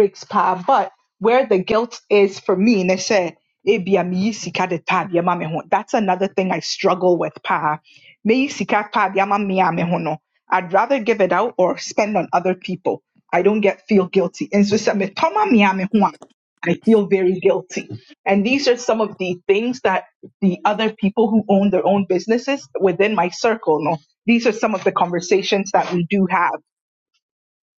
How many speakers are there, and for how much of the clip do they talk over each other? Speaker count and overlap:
1, no overlap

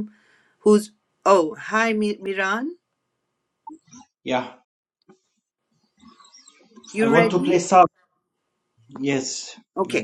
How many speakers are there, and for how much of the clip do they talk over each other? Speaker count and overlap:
2, about 9%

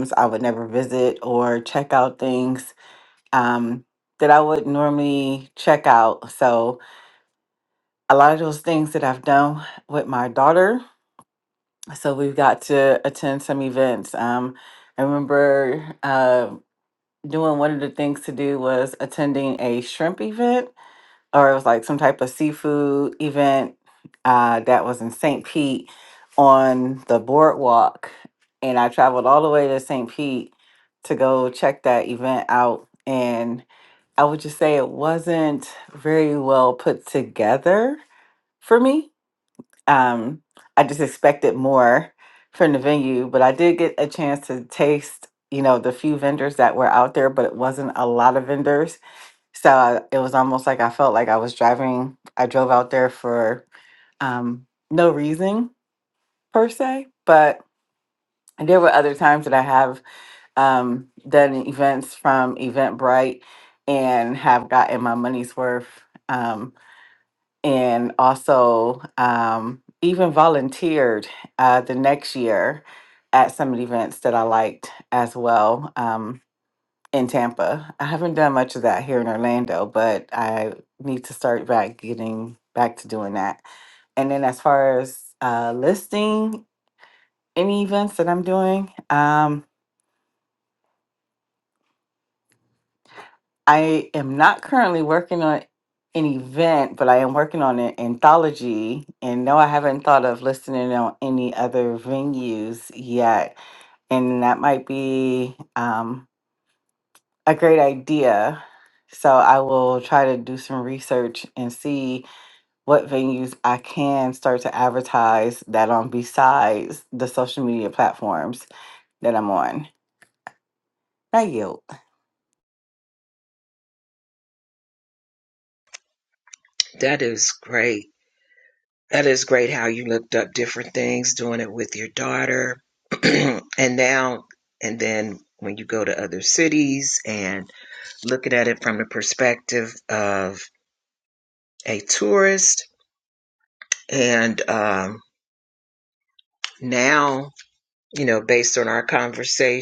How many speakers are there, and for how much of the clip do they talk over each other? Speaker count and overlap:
2, no overlap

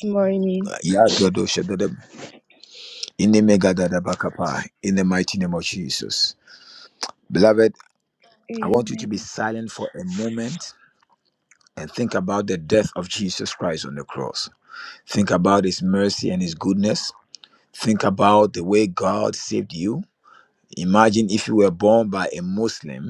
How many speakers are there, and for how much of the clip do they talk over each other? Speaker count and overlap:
2, about 2%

